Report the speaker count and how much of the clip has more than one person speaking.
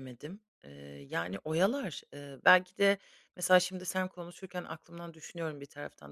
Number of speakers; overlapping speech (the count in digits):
1, no overlap